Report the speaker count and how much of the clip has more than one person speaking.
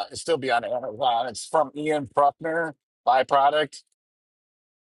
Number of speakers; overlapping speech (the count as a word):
one, no overlap